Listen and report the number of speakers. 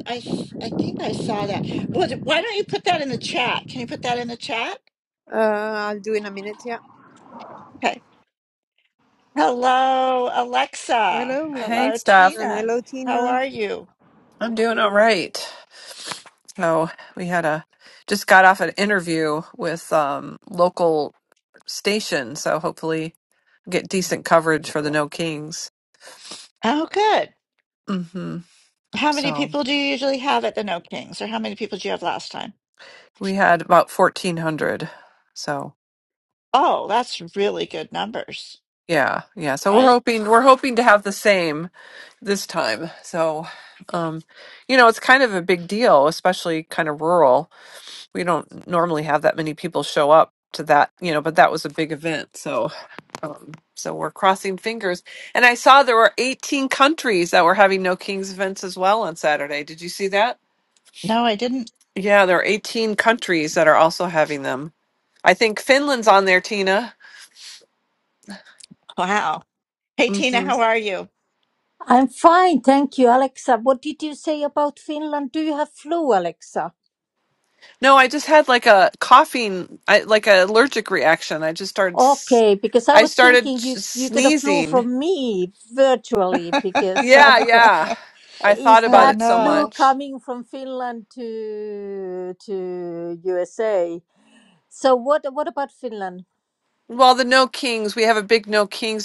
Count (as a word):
four